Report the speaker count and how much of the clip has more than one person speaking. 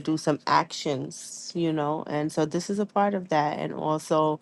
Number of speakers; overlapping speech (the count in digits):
1, no overlap